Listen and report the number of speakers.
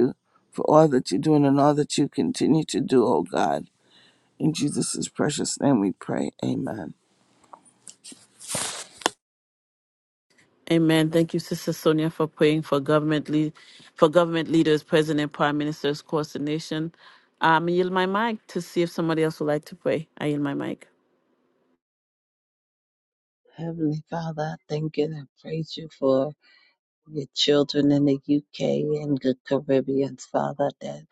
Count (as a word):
three